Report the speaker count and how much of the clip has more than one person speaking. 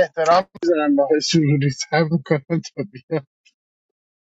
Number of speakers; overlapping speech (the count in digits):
1, no overlap